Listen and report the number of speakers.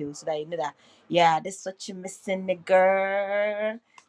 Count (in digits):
1